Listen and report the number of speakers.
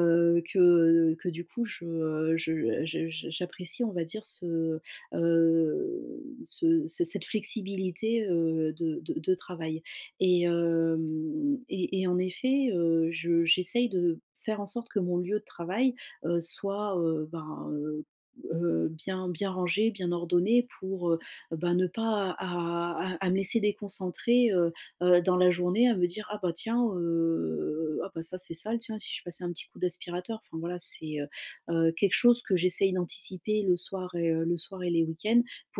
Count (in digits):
1